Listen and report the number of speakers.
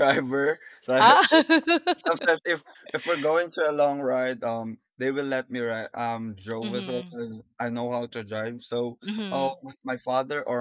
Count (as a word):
two